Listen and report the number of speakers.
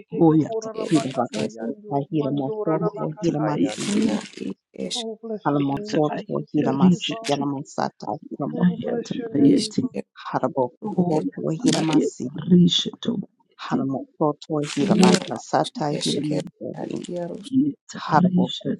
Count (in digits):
4